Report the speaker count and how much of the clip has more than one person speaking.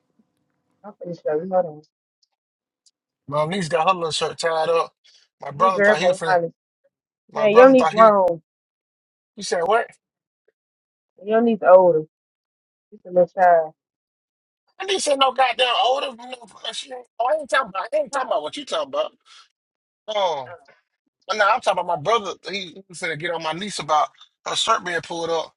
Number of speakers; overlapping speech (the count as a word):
two, about 6%